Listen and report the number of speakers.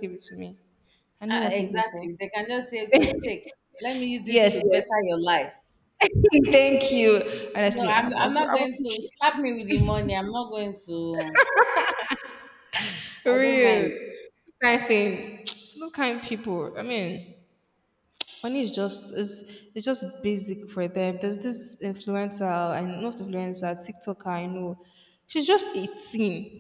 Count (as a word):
two